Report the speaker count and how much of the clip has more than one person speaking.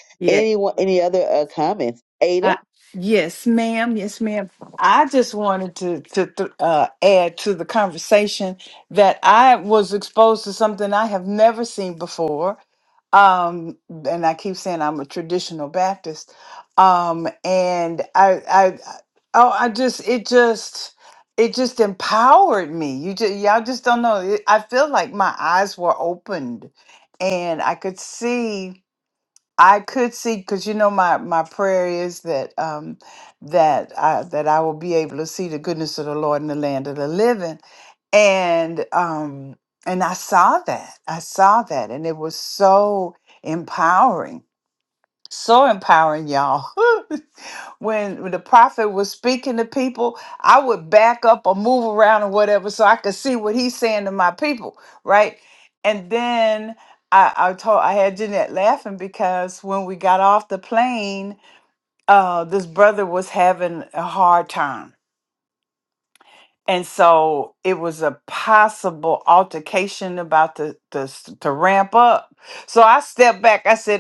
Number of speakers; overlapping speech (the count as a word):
two, under 1%